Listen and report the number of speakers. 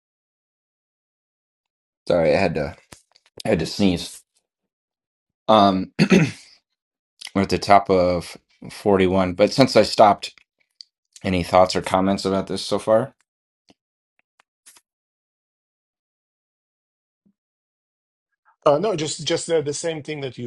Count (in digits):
2